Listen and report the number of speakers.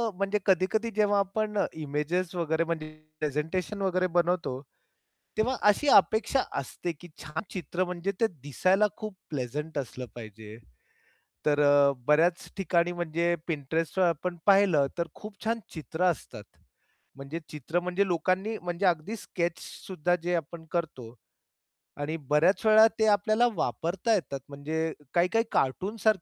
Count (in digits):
1